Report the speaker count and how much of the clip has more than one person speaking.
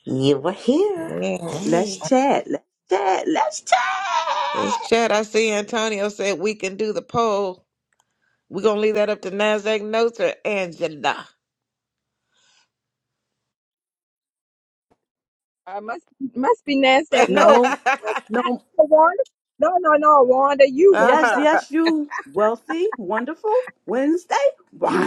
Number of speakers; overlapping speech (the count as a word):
four, about 9%